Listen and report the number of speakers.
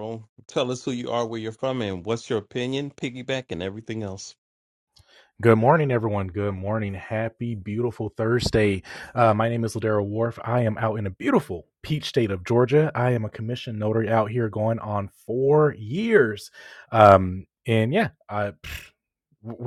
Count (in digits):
2